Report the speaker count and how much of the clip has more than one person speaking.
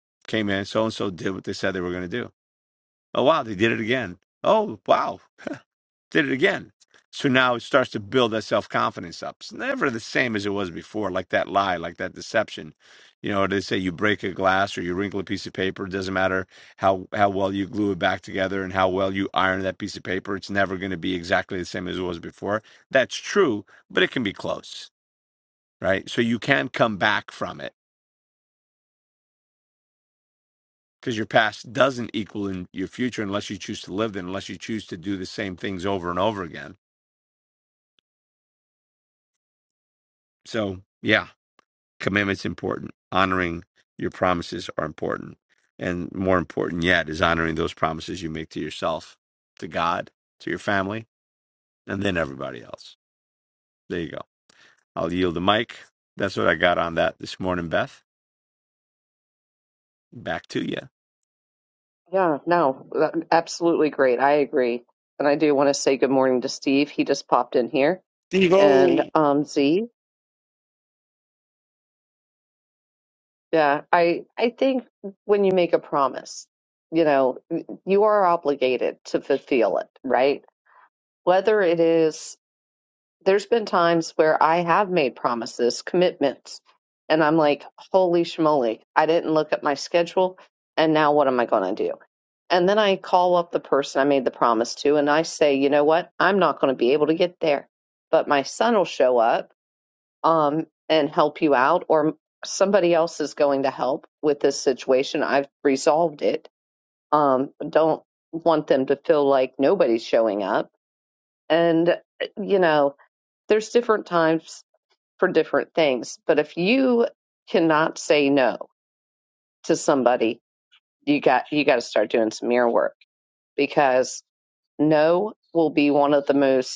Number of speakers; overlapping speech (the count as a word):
two, under 1%